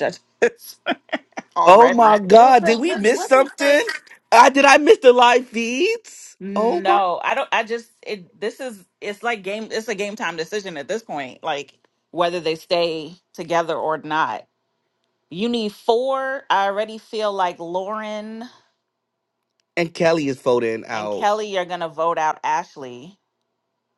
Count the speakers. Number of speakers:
2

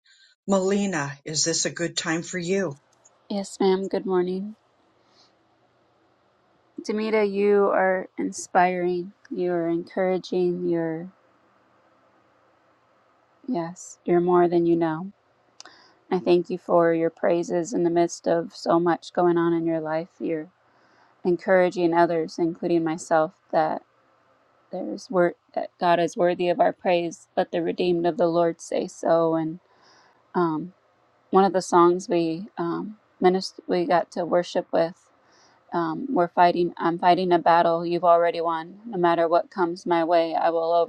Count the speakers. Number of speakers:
2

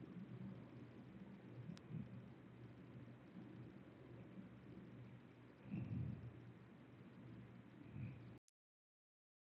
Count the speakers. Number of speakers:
0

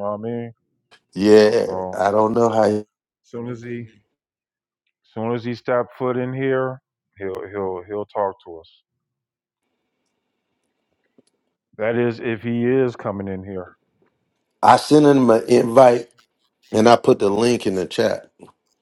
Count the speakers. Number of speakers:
2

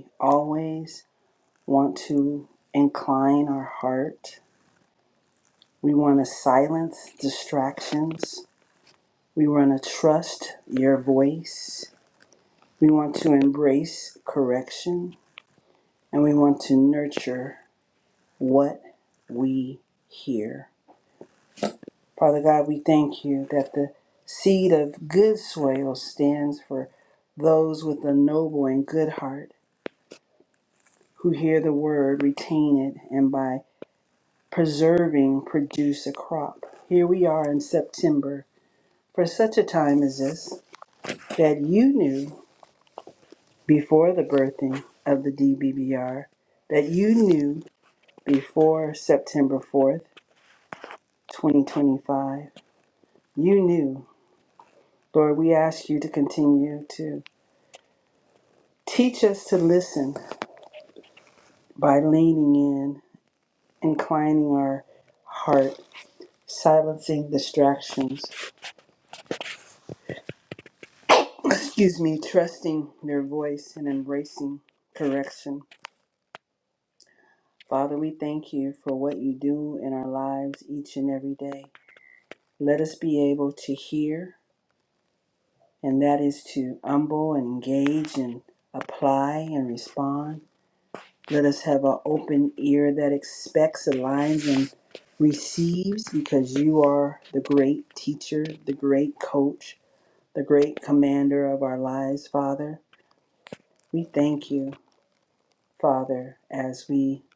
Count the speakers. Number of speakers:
1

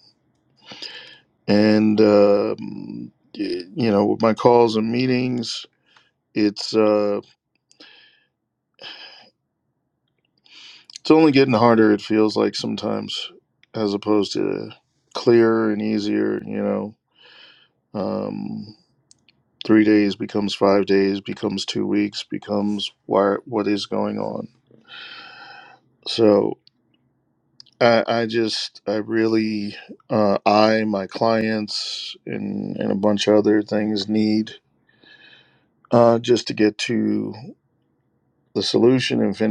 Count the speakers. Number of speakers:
1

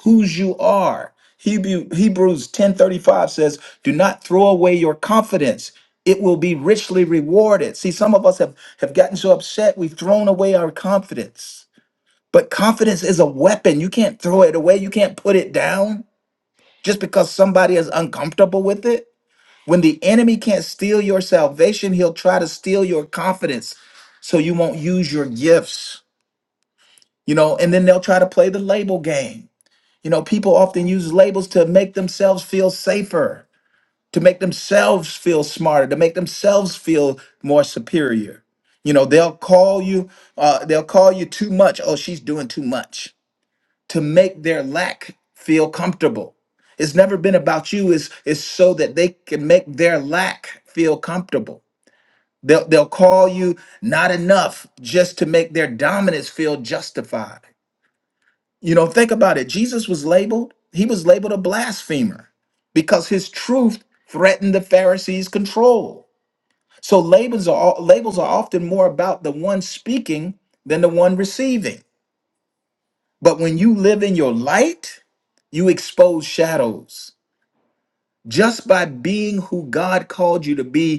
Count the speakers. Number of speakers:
1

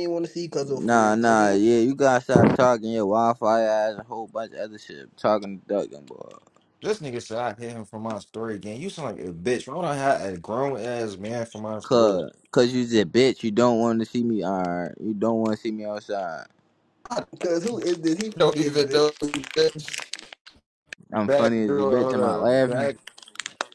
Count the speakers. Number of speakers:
3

